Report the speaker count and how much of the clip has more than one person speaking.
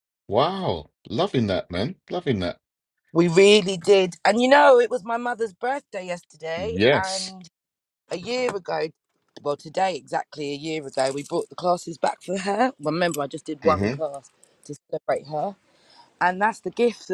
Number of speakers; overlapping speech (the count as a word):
two, about 6%